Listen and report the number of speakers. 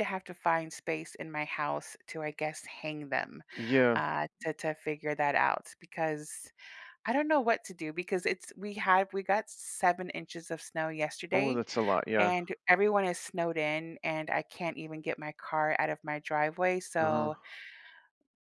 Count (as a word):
two